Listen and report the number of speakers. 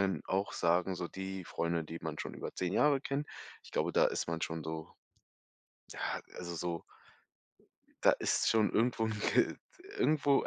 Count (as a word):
one